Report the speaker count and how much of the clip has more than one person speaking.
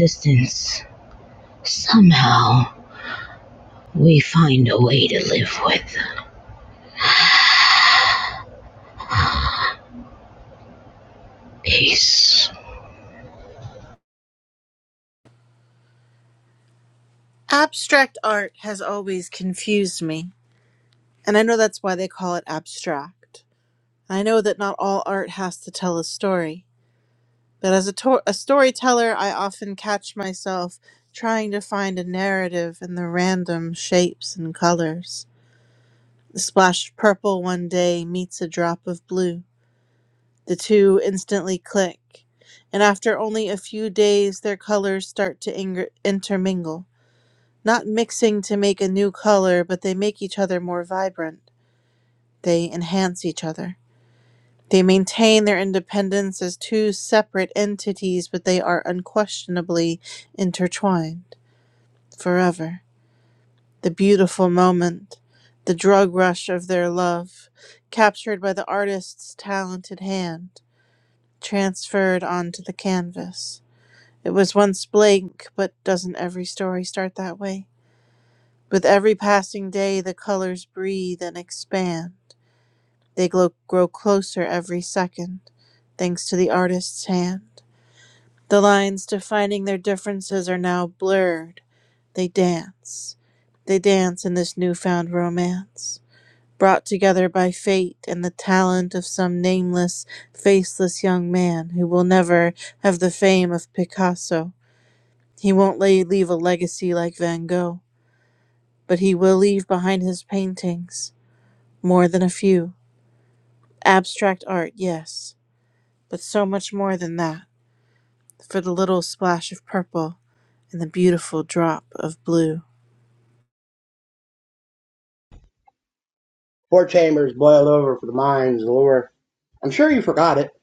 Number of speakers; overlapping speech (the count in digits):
3, no overlap